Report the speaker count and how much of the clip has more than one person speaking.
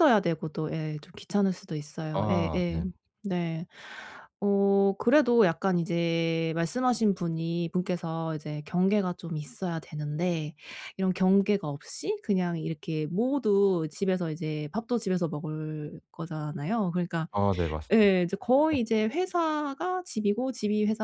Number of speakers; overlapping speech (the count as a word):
two, about 4%